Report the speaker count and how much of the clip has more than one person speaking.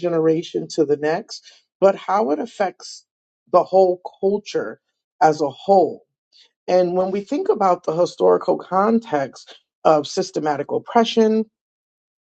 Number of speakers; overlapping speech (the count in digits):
1, no overlap